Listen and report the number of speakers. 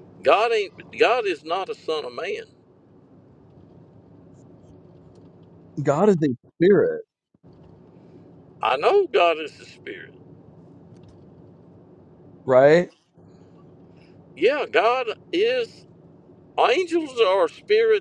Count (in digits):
2